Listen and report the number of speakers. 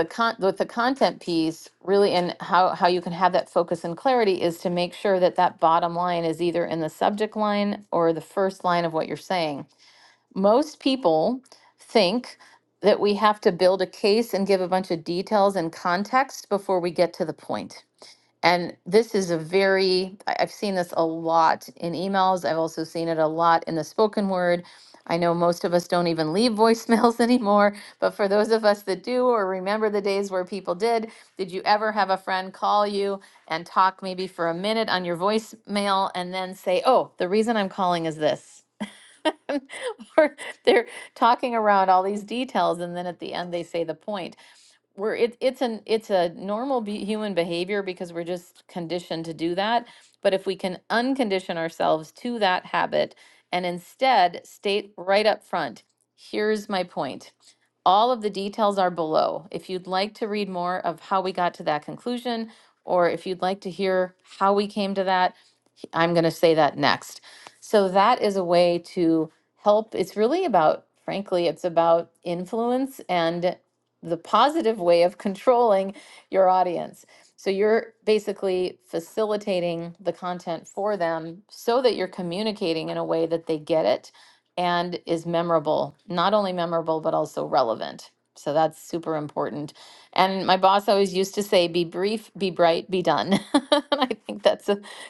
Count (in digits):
1